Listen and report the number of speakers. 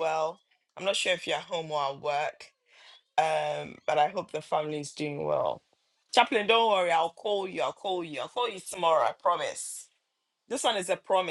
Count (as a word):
one